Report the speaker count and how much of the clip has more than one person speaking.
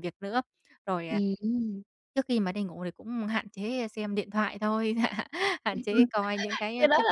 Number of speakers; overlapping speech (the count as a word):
two, about 6%